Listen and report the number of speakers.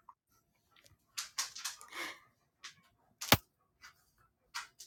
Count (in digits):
0